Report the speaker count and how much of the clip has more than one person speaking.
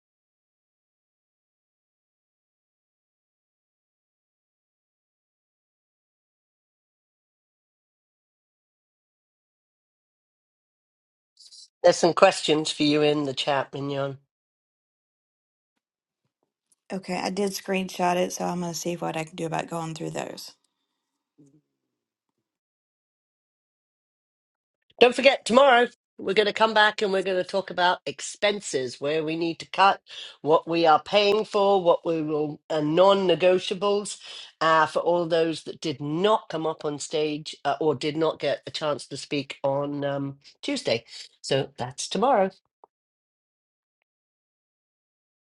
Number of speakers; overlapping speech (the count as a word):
two, no overlap